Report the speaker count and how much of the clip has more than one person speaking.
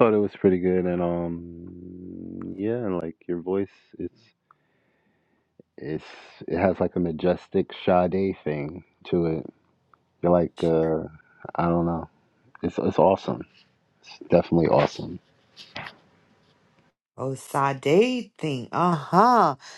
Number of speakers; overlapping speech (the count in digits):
2, no overlap